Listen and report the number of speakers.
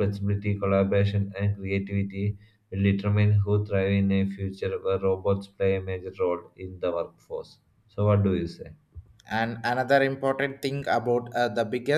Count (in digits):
2